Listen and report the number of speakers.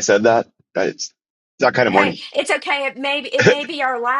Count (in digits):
2